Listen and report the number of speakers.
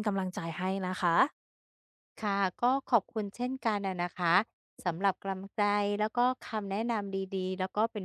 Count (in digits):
2